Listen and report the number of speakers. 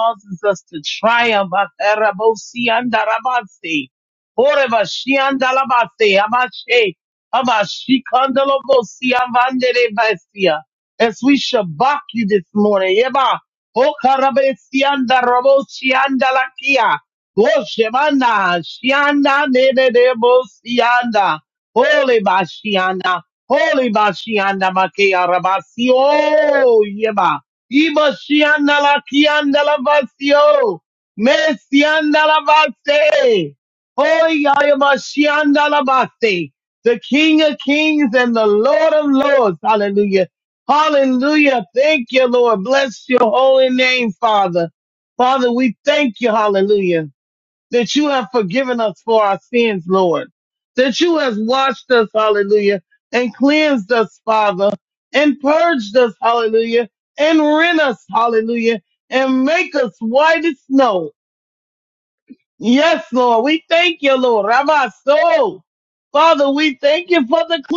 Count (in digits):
1